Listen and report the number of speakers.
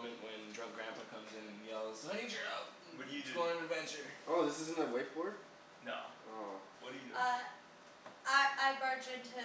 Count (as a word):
four